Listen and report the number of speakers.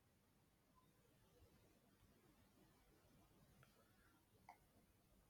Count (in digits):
0